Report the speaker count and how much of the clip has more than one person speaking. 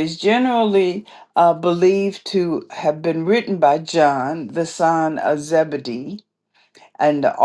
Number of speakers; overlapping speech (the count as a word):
one, no overlap